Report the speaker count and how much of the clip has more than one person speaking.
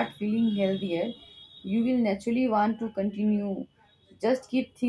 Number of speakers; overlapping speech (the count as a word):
one, no overlap